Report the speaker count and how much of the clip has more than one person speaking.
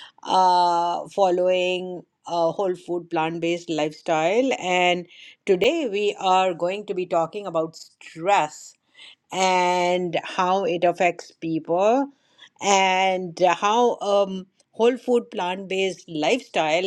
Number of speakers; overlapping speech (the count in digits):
1, no overlap